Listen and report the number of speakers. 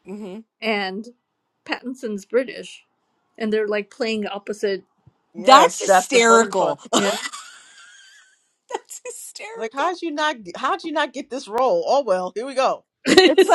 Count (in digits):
3